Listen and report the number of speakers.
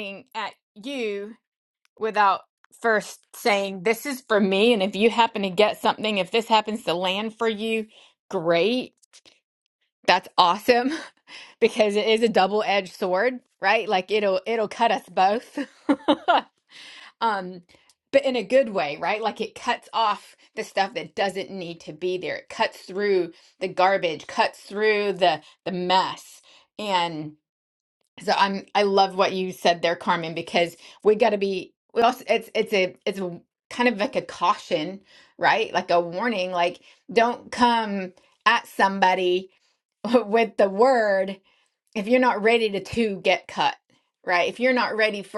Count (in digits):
1